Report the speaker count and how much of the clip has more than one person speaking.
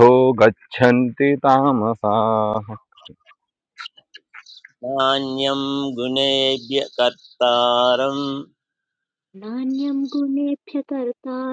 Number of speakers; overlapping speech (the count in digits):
3, no overlap